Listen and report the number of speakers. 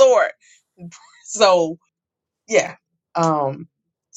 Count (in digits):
1